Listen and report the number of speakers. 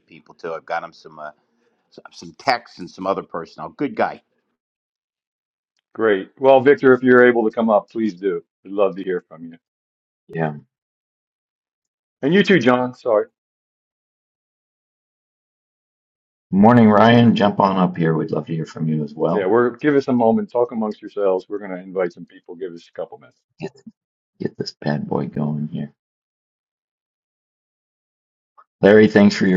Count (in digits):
3